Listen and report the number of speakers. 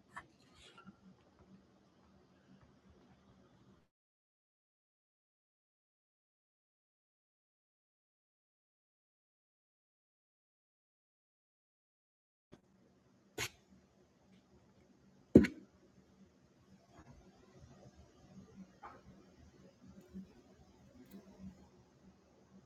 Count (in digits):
0